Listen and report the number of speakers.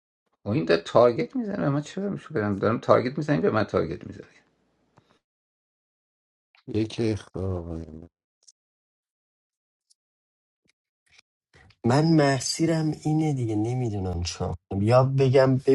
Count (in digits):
3